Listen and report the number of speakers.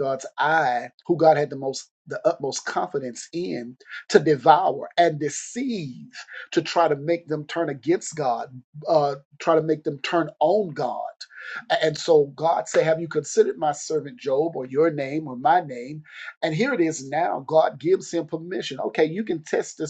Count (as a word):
one